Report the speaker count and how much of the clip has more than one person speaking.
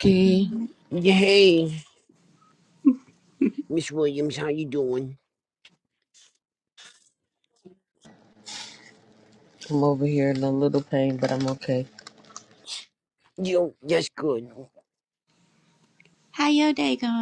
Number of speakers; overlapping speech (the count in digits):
3, about 1%